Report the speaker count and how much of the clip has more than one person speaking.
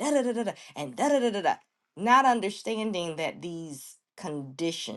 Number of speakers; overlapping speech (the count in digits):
1, no overlap